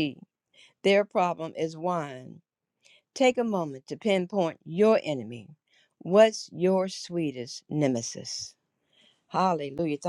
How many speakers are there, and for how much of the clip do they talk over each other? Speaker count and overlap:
1, no overlap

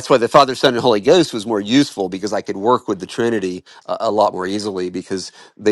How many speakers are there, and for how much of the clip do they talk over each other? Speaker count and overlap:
1, no overlap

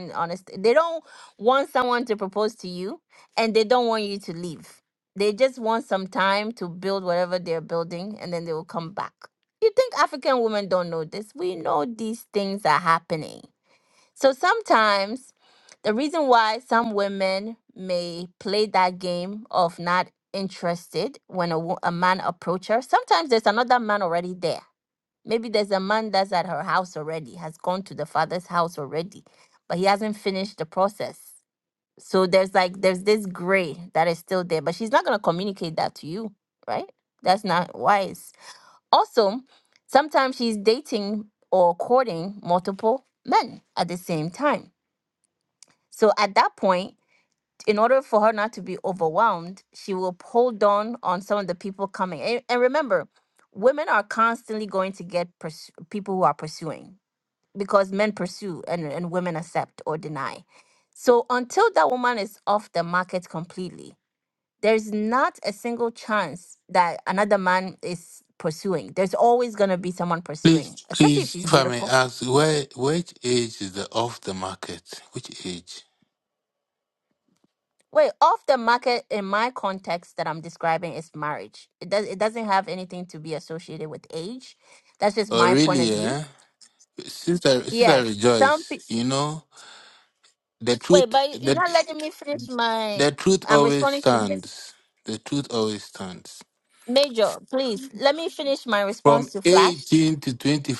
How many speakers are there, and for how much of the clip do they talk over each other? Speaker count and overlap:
2, about 6%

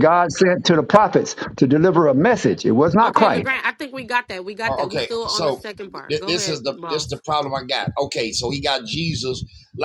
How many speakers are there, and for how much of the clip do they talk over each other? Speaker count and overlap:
3, about 24%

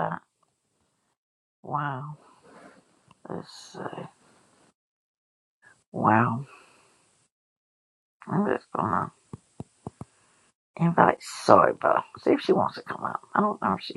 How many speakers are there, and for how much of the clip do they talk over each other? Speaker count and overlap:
1, no overlap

